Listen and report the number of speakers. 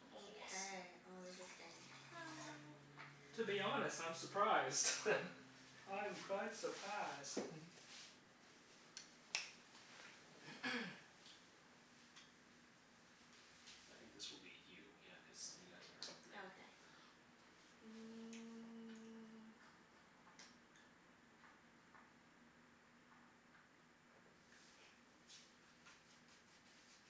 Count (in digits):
3